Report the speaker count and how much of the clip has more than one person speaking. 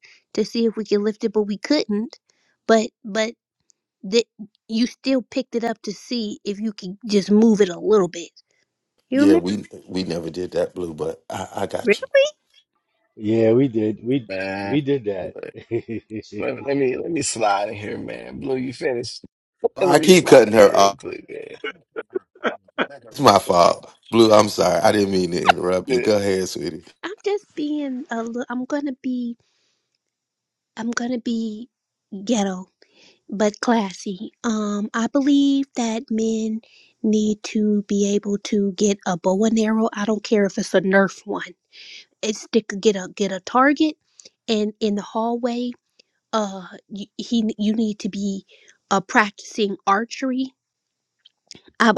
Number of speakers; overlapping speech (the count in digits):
4, about 4%